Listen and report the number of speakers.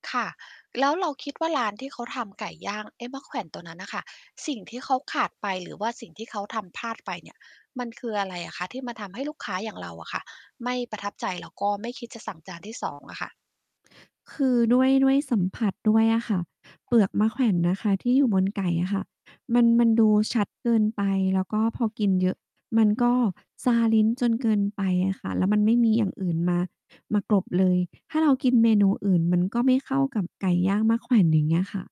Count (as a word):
two